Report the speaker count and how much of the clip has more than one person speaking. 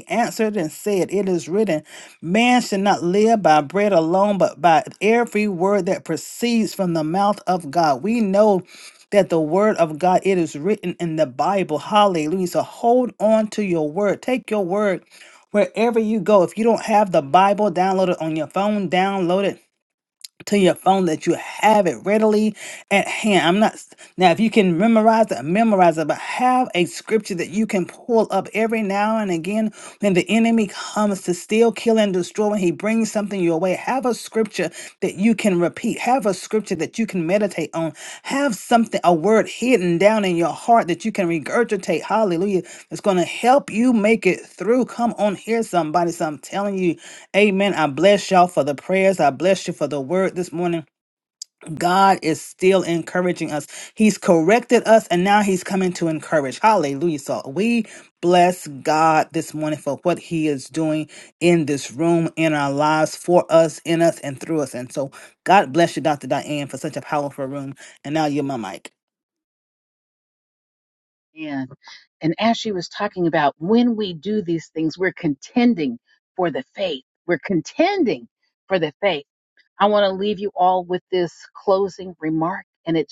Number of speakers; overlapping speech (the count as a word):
two, no overlap